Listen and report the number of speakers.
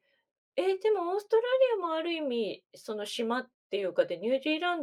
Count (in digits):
1